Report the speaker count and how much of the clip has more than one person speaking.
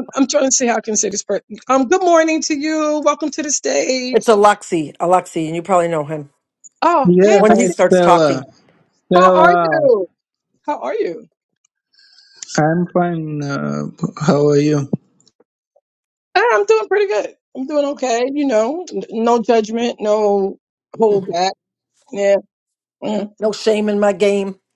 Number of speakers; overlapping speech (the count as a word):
three, about 8%